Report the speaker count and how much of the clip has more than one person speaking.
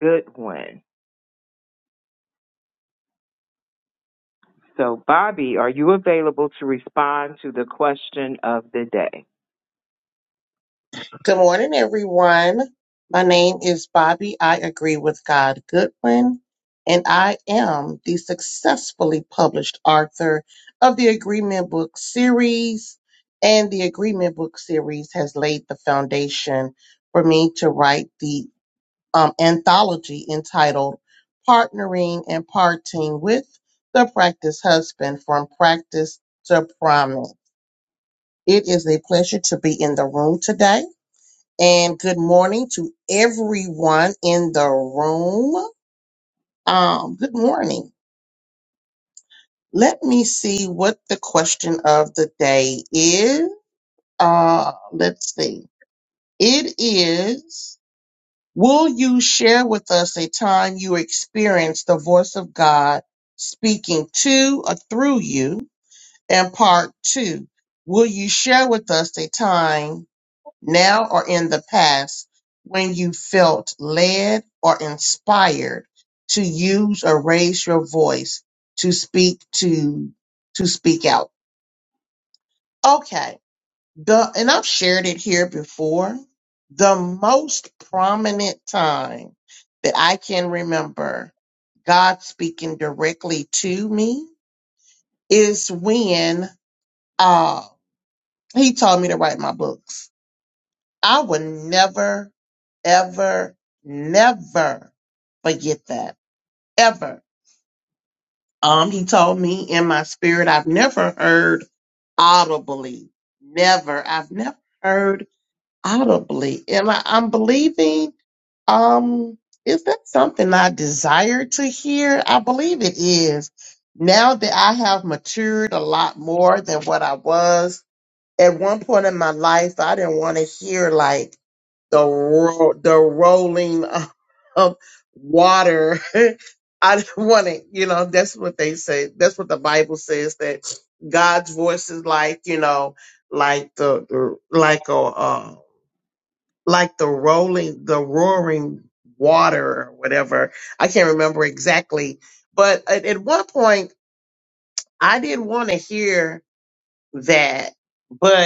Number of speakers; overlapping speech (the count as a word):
two, no overlap